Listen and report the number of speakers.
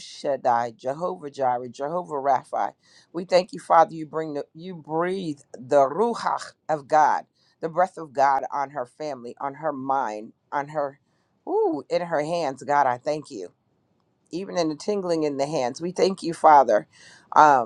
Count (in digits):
1